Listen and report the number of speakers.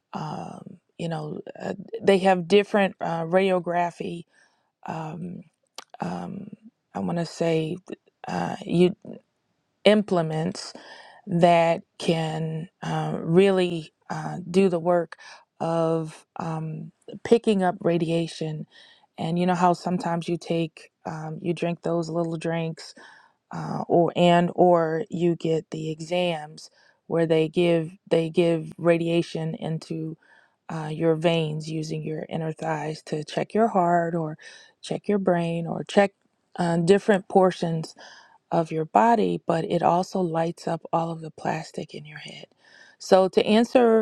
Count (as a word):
one